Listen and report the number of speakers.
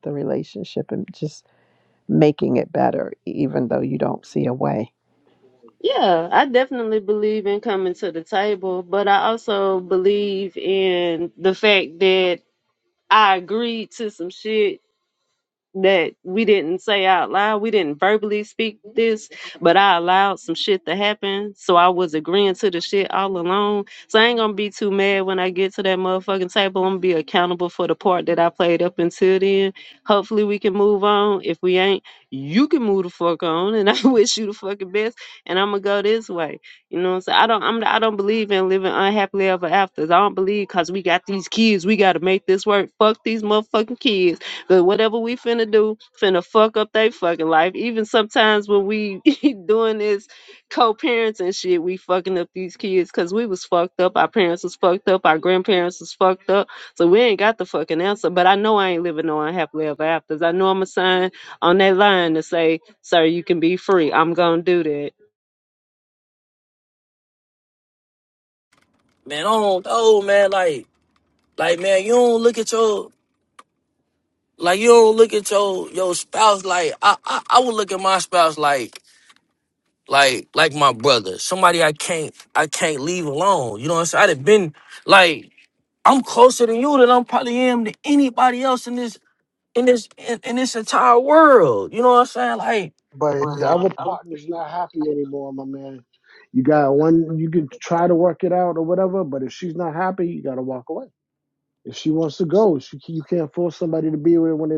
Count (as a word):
four